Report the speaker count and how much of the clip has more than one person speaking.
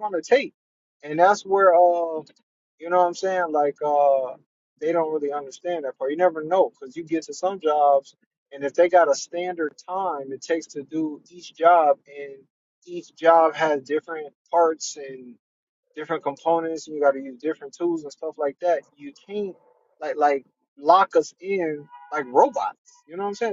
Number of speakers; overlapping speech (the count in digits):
1, no overlap